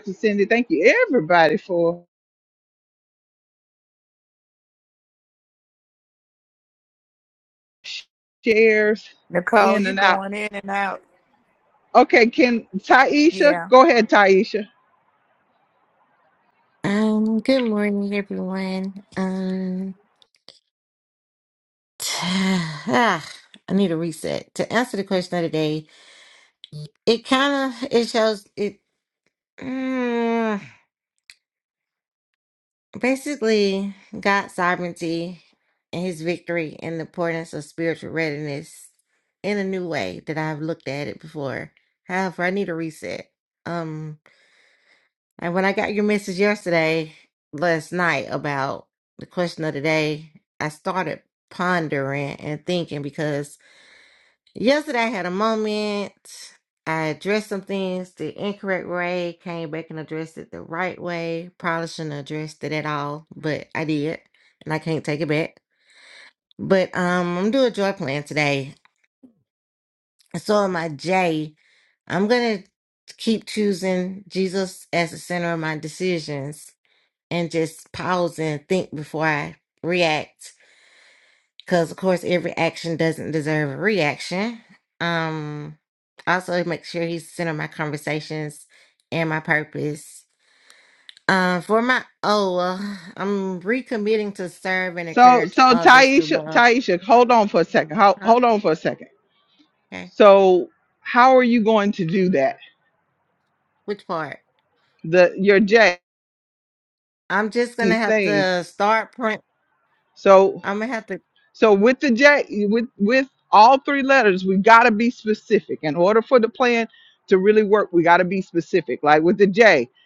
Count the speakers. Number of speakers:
three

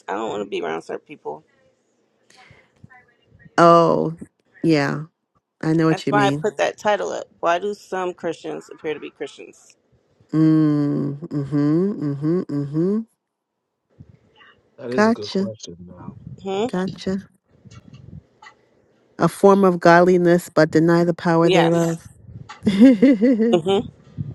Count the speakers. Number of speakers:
three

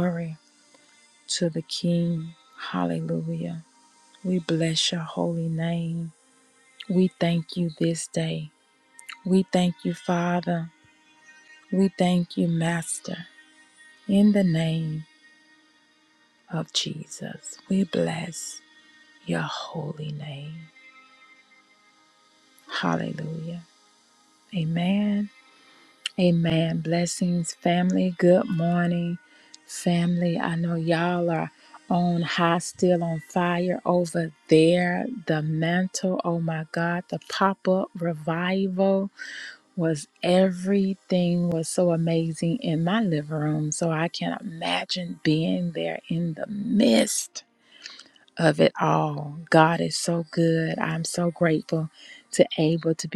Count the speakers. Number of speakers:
one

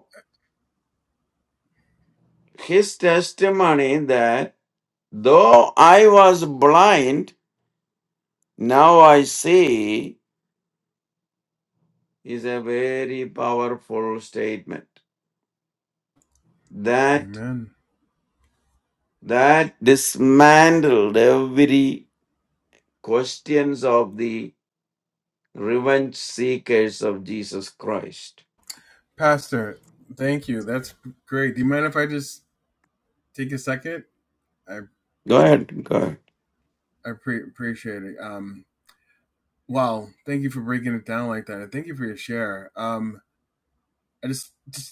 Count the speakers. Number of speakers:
two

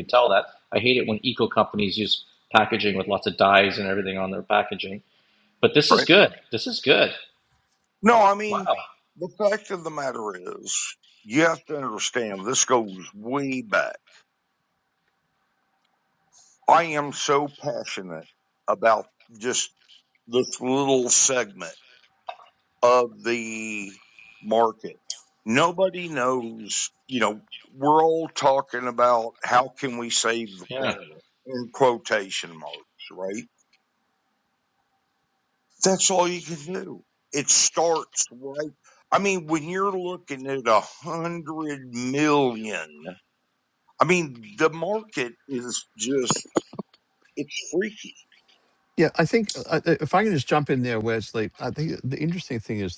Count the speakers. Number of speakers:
three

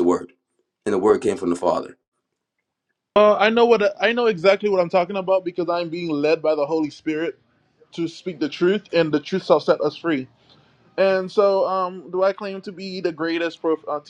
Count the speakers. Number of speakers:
two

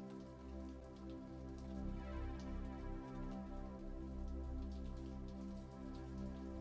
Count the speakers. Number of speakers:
zero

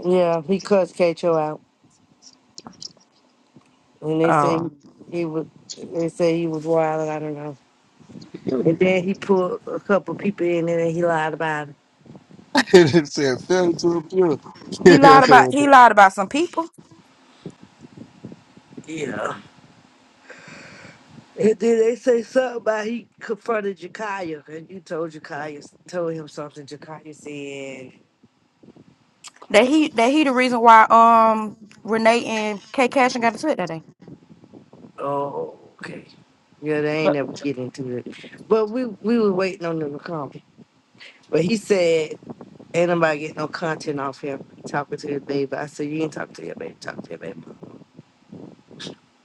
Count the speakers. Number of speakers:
three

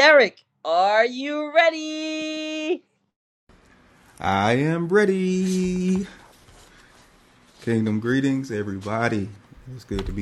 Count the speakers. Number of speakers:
two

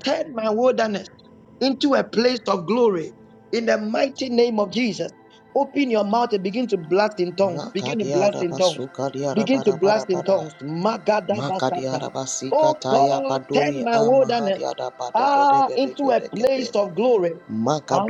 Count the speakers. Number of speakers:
two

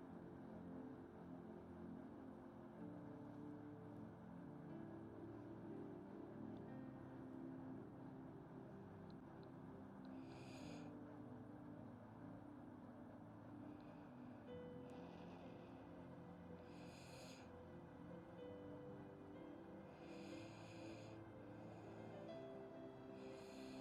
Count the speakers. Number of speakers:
zero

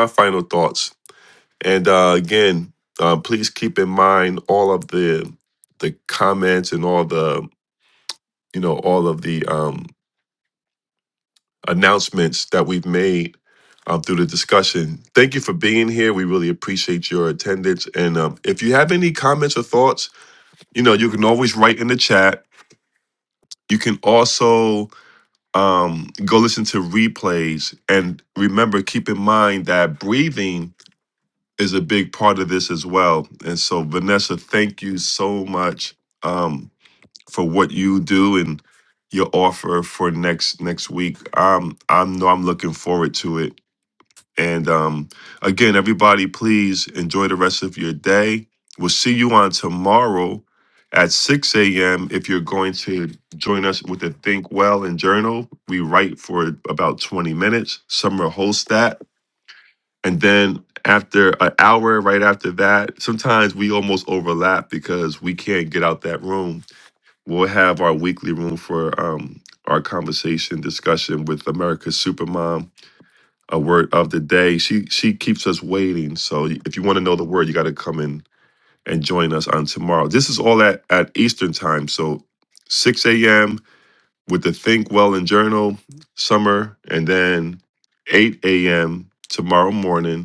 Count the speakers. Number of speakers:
one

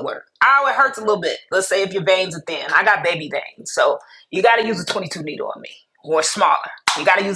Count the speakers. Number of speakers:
one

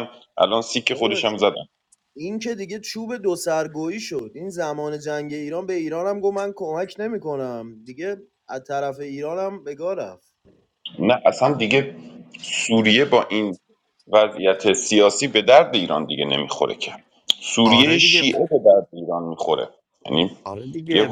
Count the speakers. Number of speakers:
three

